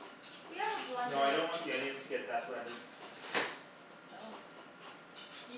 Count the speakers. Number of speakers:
2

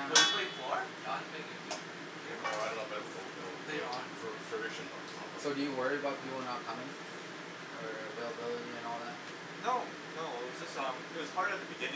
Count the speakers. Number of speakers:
4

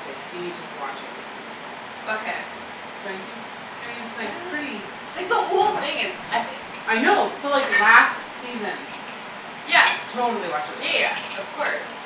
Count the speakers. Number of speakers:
2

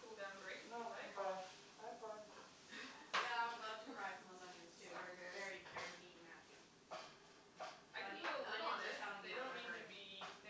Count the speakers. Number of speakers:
3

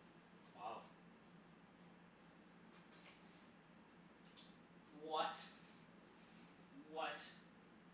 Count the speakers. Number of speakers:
1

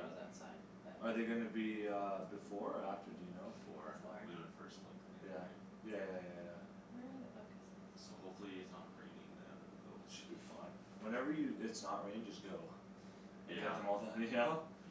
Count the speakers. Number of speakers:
3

